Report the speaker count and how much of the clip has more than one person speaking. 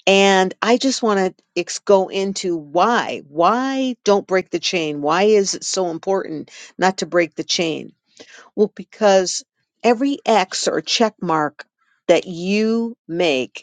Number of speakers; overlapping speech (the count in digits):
1, no overlap